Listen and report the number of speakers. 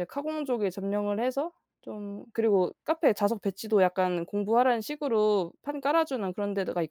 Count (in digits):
1